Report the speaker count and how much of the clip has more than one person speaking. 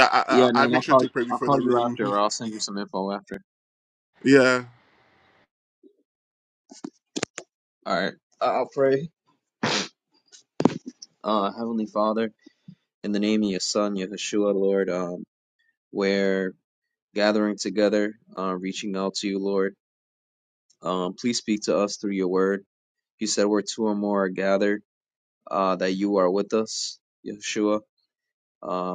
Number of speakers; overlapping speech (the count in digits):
2, about 6%